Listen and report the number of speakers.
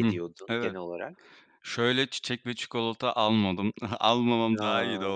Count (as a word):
two